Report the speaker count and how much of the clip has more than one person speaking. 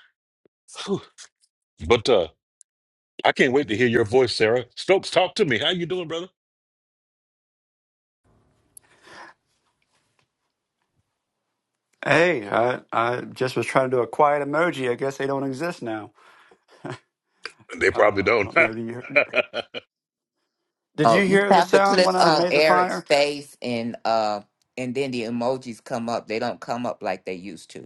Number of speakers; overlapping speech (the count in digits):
3, about 9%